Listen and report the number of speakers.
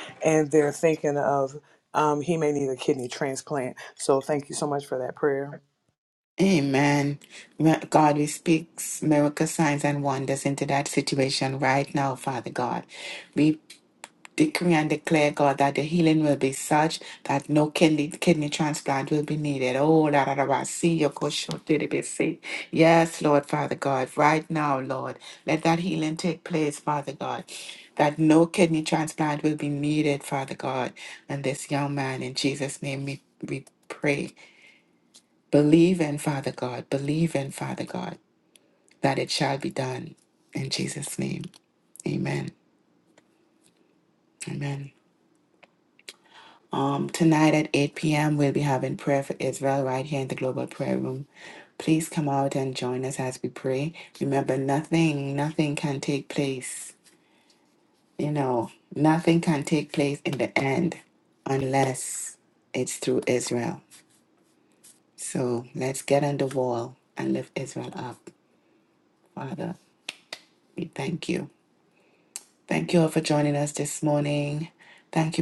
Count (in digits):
2